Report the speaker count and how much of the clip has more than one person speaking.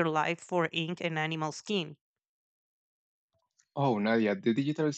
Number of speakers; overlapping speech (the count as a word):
two, no overlap